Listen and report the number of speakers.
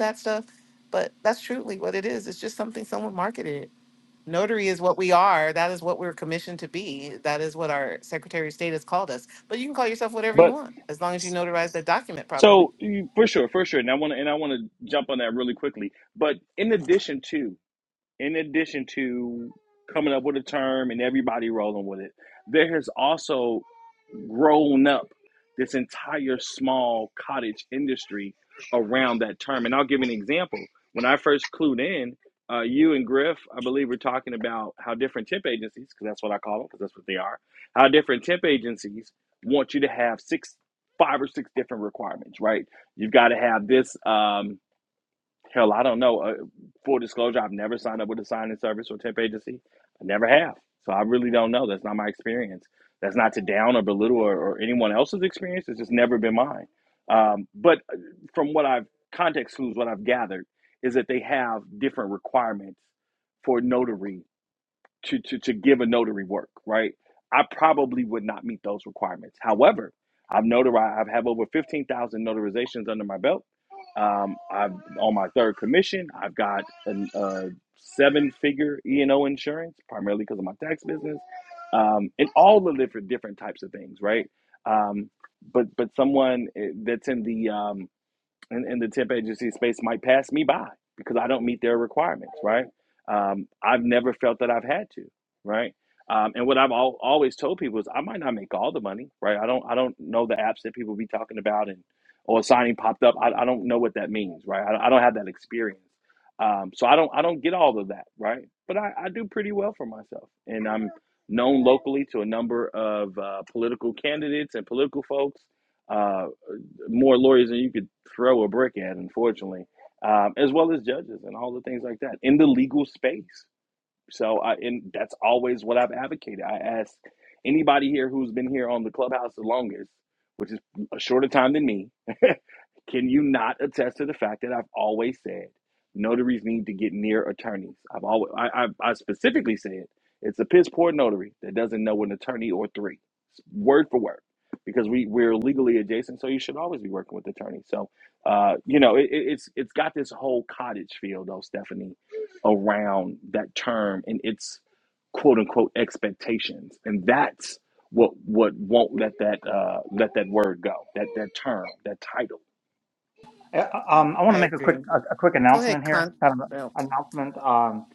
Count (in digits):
3